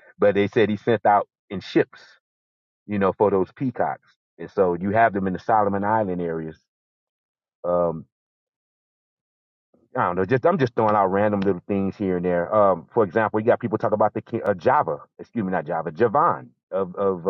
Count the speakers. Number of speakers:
1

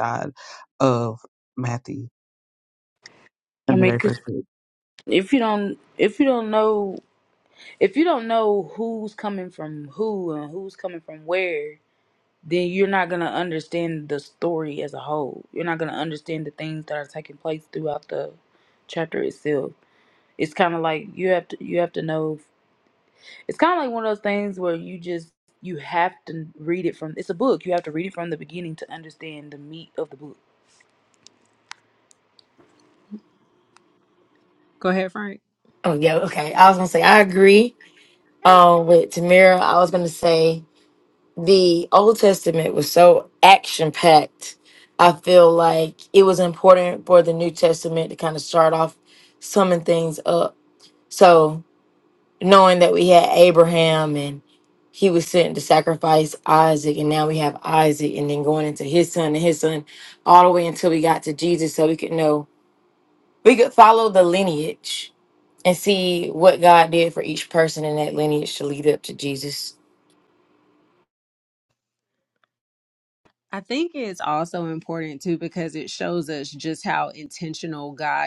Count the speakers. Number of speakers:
4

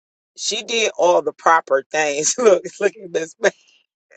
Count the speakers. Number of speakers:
1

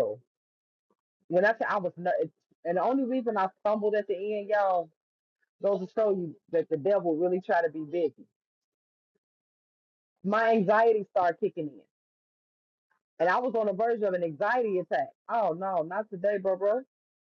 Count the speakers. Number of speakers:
1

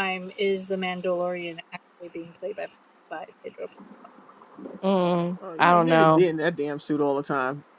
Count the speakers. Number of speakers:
3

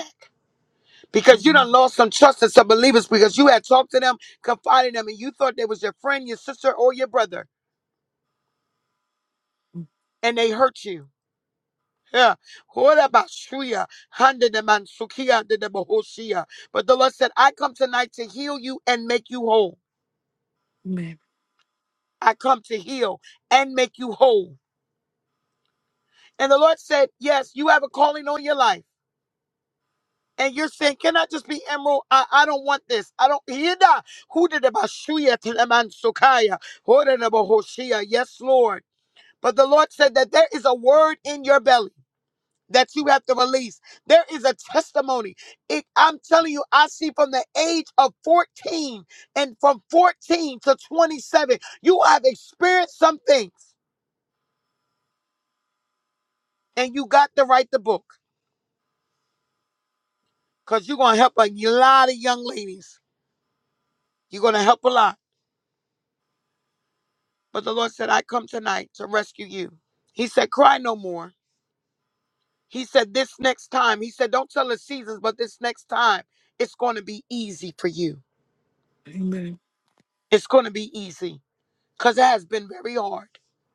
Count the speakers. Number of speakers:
2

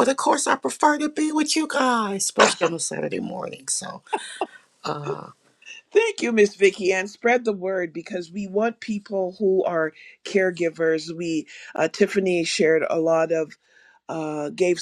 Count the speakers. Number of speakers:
2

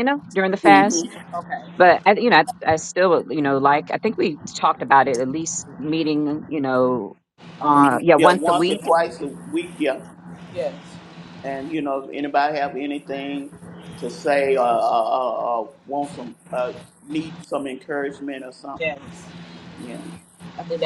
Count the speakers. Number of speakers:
3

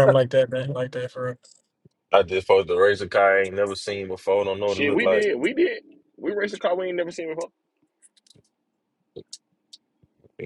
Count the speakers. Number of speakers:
3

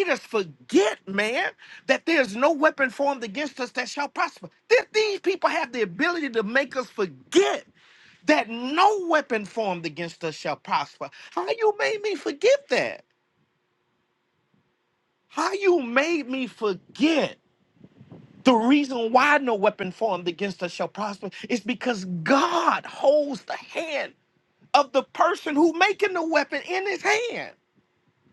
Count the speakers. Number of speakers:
1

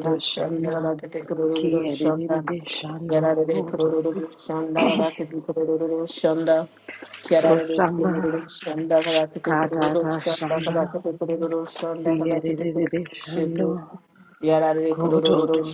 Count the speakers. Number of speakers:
2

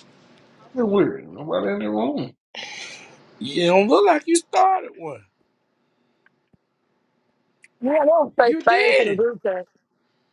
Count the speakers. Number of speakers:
3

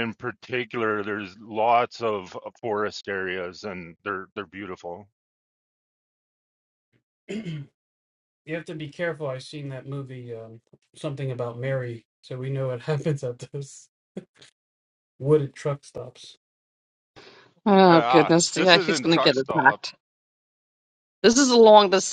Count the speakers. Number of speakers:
3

